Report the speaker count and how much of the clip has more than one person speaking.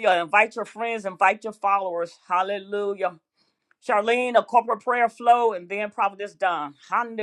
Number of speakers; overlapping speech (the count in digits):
1, no overlap